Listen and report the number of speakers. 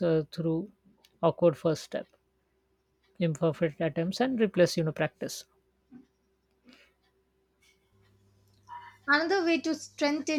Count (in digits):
2